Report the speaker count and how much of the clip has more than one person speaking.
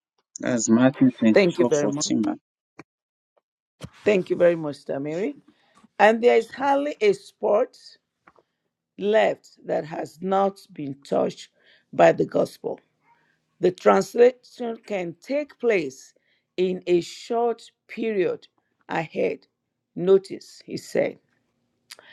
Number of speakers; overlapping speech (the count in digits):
2, about 3%